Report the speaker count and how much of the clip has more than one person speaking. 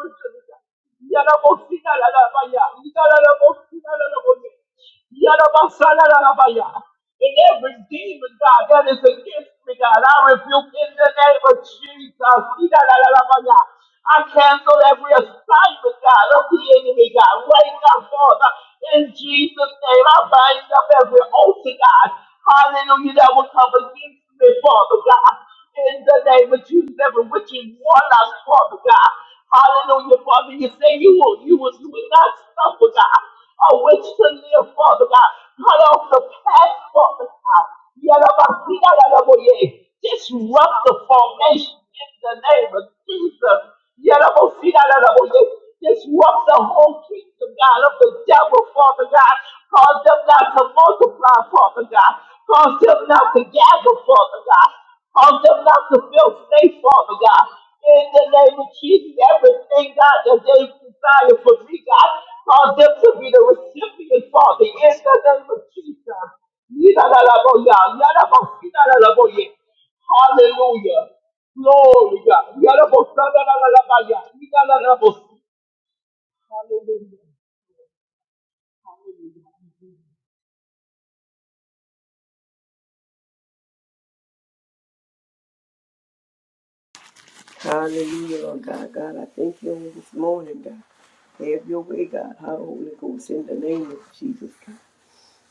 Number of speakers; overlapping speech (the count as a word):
two, no overlap